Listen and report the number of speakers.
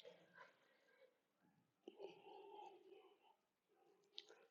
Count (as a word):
zero